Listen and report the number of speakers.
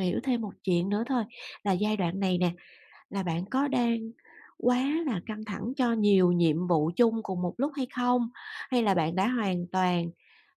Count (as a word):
one